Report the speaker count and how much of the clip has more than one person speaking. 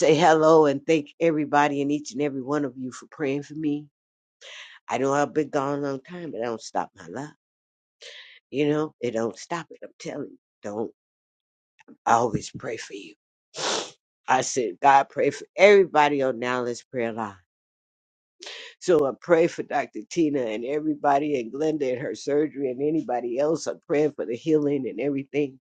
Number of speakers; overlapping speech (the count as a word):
one, no overlap